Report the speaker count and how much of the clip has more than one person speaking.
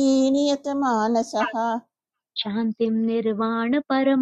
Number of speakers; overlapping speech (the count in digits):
2, no overlap